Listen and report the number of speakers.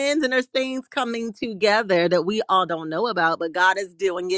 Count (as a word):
one